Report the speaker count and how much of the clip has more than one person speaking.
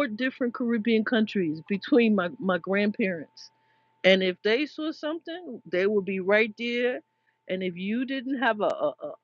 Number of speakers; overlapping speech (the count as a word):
one, no overlap